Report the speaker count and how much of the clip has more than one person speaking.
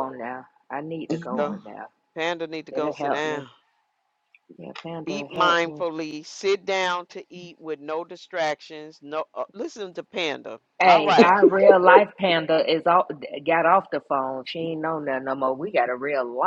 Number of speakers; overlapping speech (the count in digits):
2, about 13%